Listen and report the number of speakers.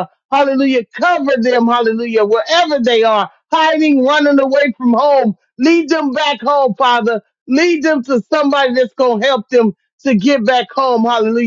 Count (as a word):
one